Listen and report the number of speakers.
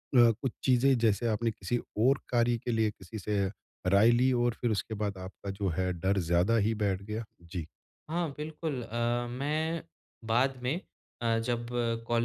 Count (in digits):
2